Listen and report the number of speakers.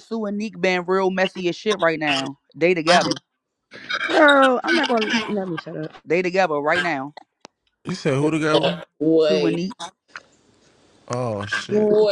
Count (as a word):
four